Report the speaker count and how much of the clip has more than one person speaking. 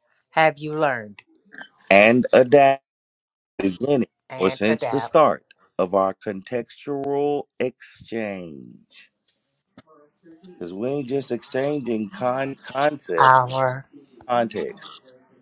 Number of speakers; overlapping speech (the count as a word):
two, about 6%